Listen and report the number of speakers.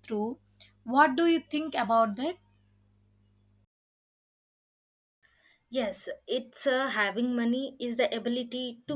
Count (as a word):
two